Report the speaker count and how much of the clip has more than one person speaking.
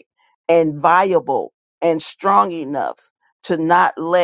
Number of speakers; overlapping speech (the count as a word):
one, no overlap